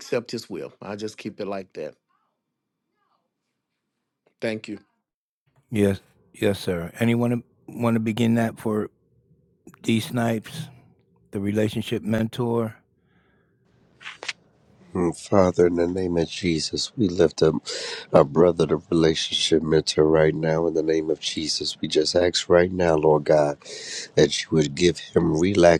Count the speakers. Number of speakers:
3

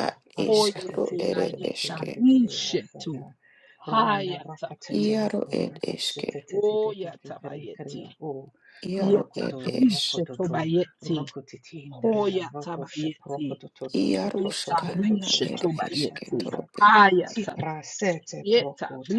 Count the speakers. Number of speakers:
3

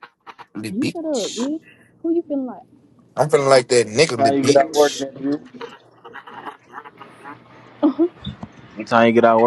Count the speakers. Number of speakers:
3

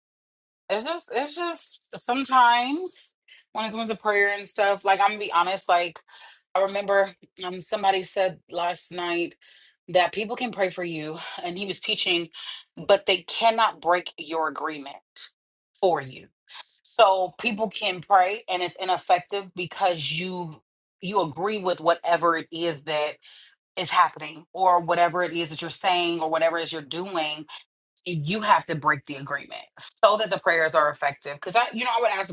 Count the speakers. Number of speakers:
1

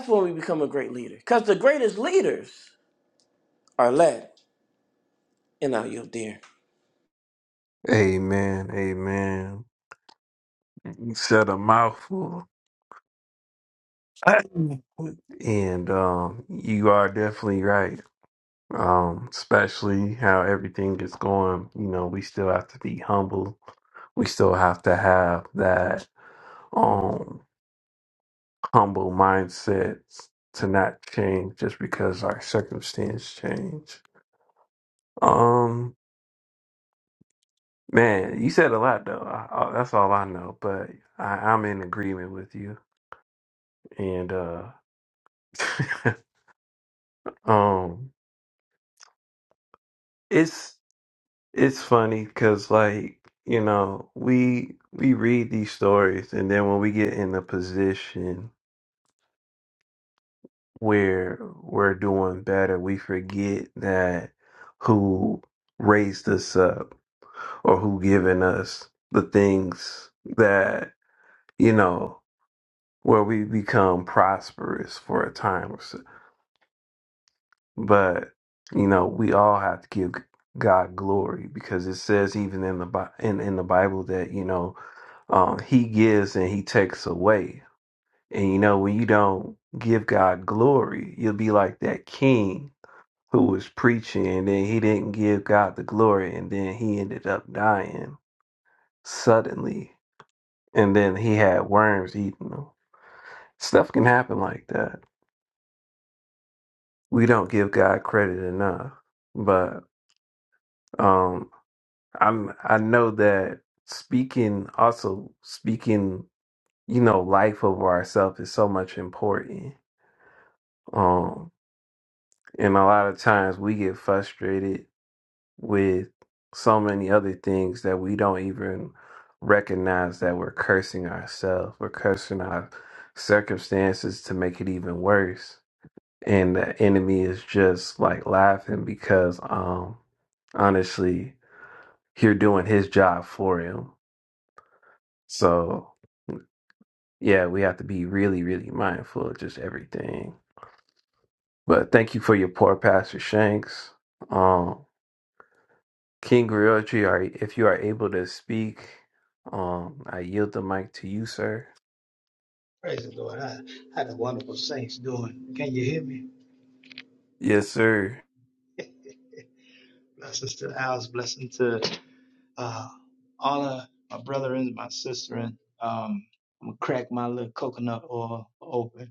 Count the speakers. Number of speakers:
3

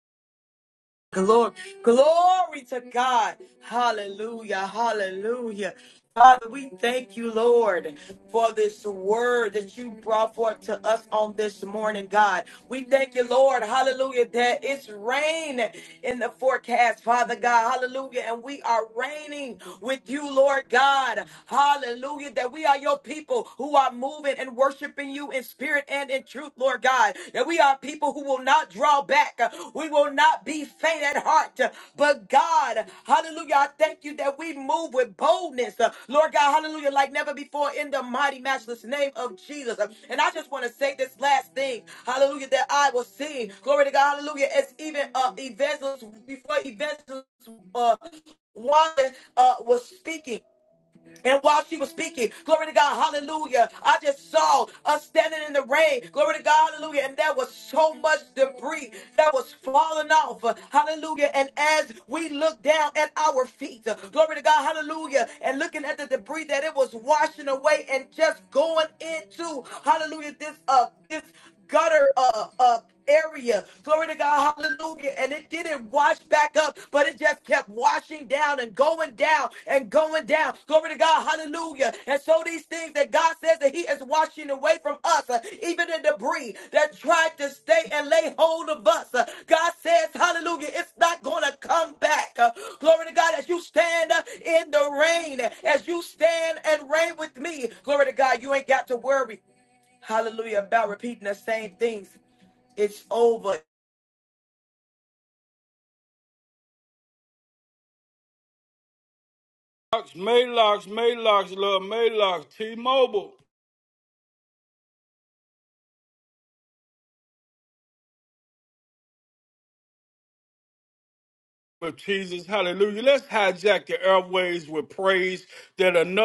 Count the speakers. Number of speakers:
2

